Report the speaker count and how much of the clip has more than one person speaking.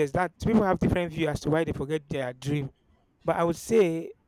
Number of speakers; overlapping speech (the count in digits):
1, no overlap